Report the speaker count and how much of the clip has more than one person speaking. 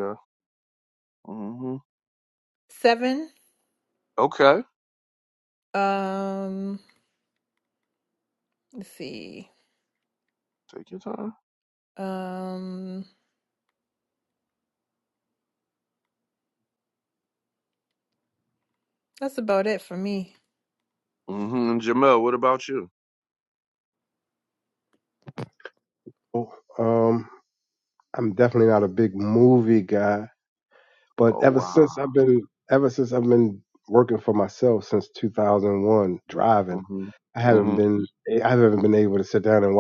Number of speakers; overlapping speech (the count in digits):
3, about 3%